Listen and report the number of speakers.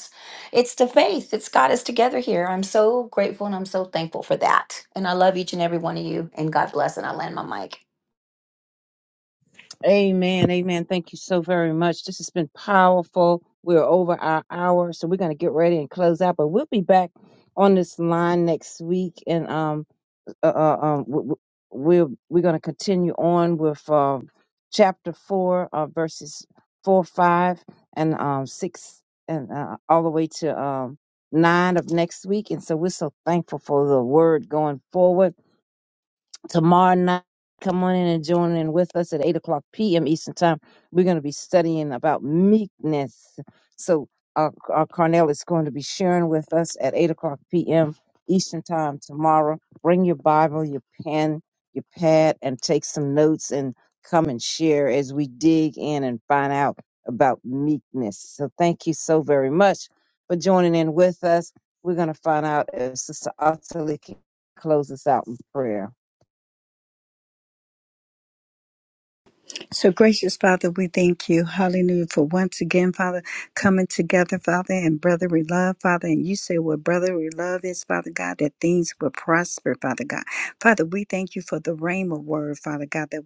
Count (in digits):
3